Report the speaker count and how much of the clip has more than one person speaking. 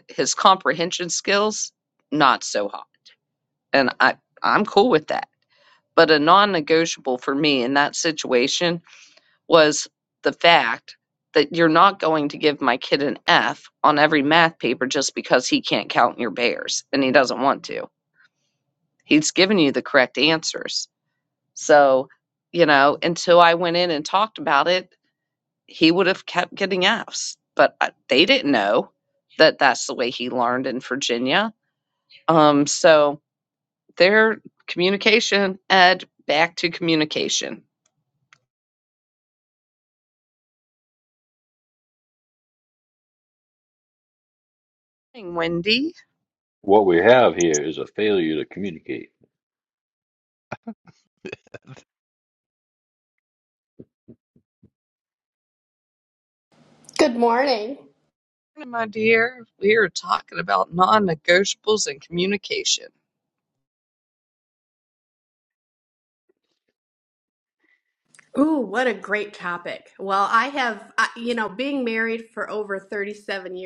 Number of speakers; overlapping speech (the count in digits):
3, no overlap